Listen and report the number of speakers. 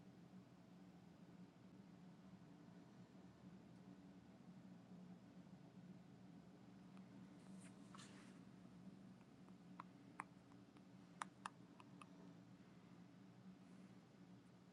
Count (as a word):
zero